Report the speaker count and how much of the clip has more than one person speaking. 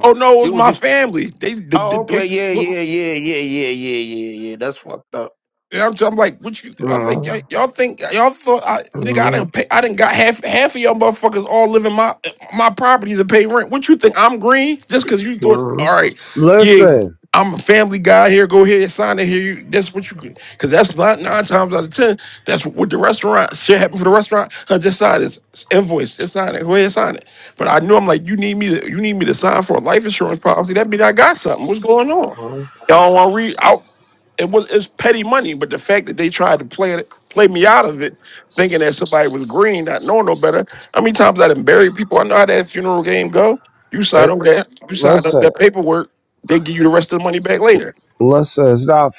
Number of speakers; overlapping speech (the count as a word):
three, about 7%